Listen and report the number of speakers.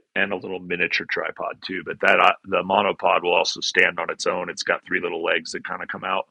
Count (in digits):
1